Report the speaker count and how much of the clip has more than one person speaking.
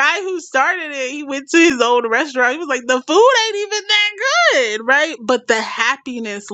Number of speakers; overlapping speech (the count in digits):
1, no overlap